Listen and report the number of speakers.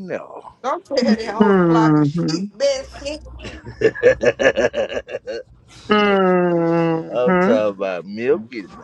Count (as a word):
three